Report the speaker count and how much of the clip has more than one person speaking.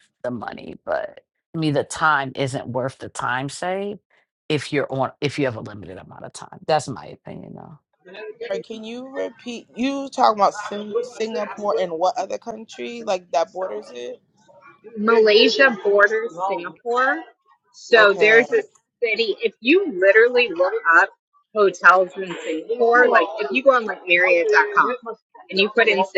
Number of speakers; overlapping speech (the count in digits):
3, about 2%